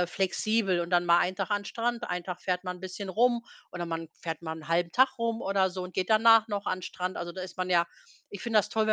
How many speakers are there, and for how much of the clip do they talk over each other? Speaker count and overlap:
1, no overlap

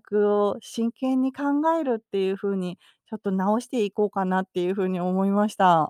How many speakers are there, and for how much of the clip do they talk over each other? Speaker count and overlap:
1, no overlap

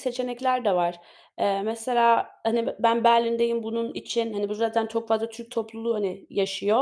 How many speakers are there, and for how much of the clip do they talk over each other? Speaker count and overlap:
1, no overlap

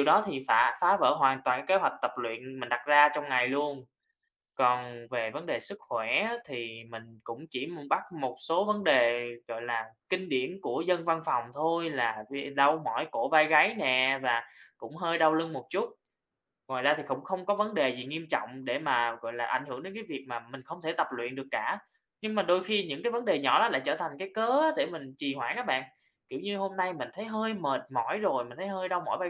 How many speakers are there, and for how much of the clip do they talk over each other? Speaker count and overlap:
1, no overlap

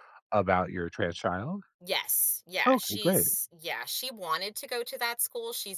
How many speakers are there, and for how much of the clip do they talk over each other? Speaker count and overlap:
2, about 9%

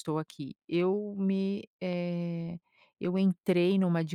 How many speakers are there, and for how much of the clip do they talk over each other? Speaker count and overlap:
1, no overlap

